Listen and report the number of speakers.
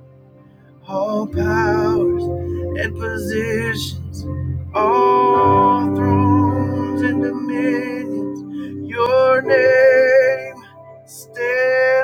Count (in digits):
1